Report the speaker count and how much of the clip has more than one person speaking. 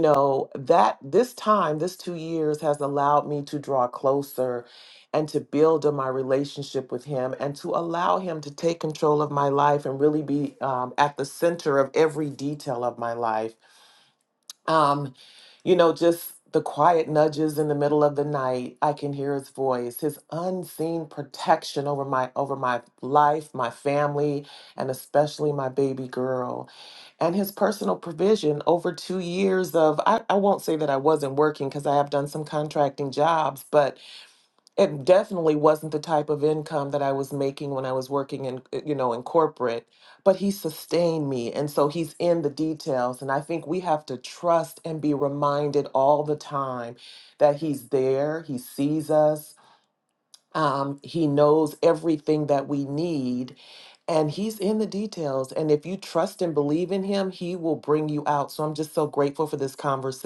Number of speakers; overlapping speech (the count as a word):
one, no overlap